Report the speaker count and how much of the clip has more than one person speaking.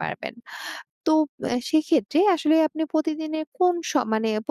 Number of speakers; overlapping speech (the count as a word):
one, no overlap